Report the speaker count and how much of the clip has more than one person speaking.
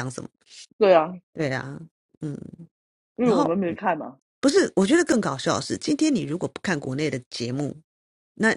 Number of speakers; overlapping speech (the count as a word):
two, about 3%